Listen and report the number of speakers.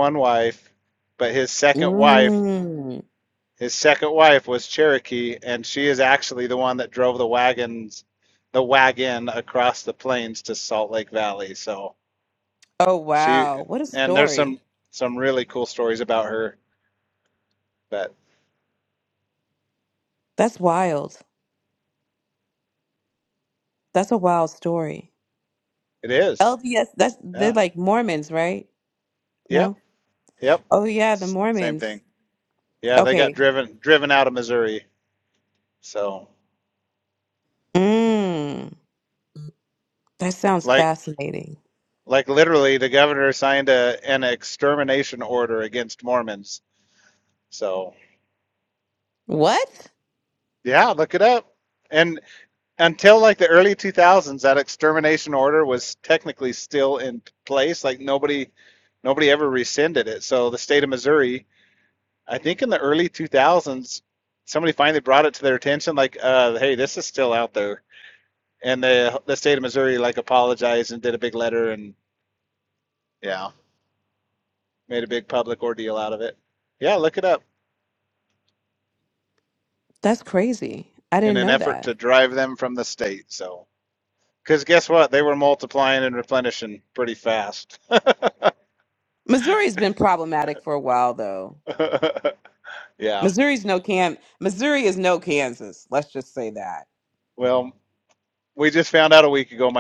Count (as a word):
two